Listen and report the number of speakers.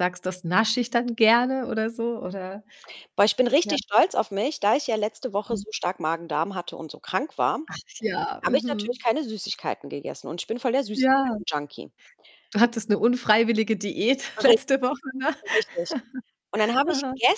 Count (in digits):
2